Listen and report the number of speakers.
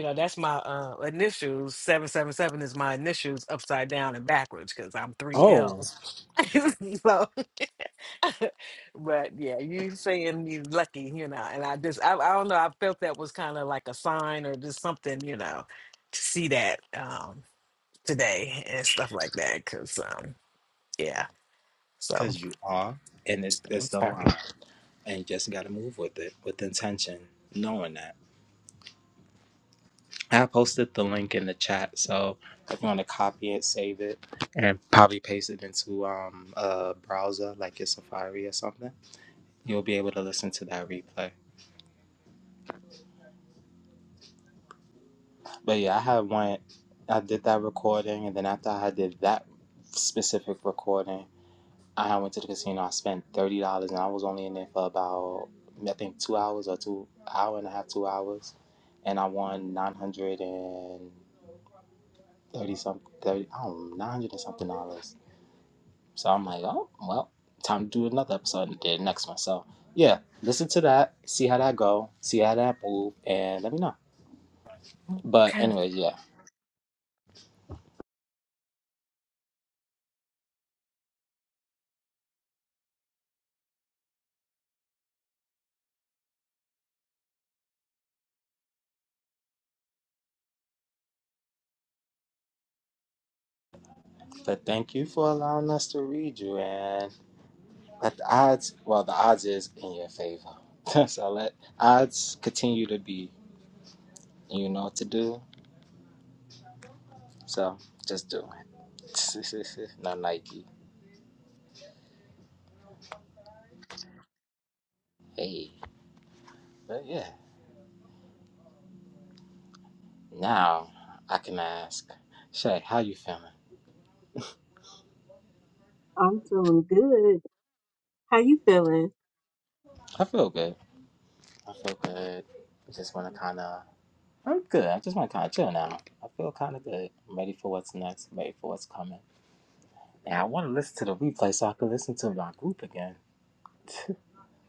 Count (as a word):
three